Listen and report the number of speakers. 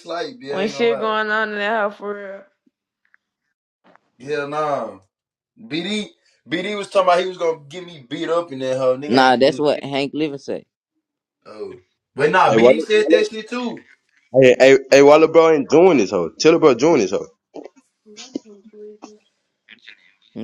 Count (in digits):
4